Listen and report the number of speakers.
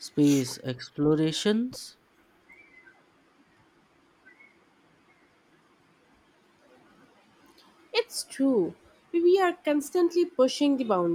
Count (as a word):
two